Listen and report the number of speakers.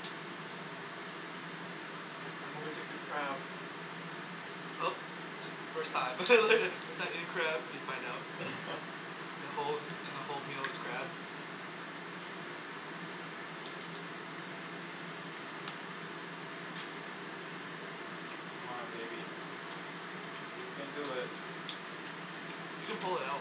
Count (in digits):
2